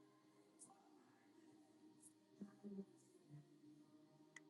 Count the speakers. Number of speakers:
zero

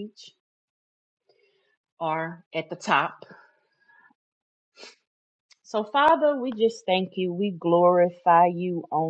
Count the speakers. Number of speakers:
one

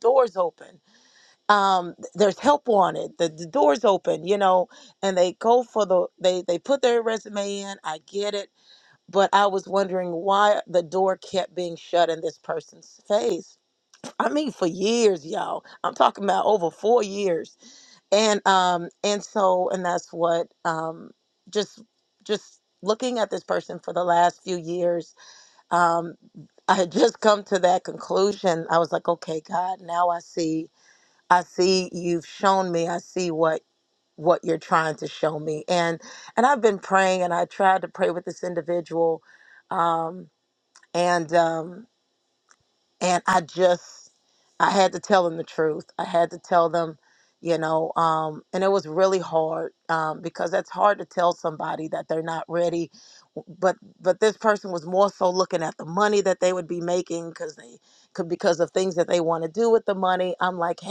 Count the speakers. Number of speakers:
one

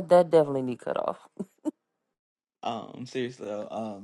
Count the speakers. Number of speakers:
two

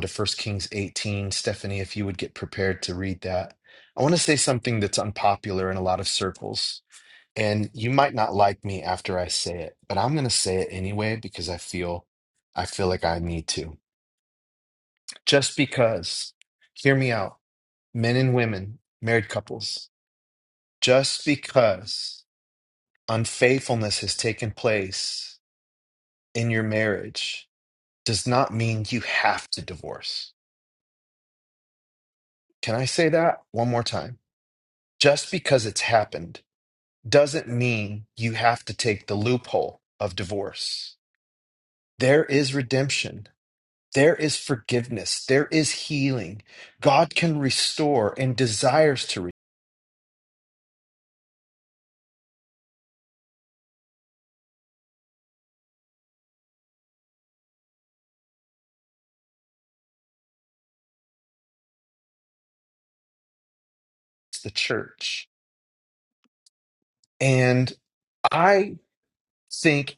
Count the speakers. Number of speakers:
one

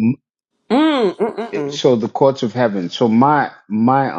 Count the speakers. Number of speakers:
two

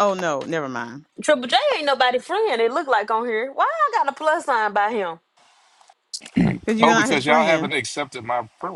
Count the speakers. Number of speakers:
three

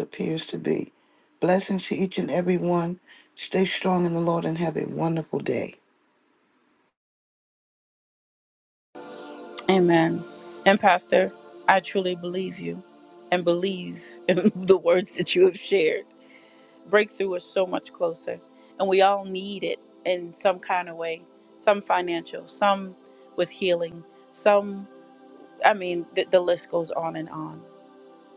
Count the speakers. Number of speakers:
two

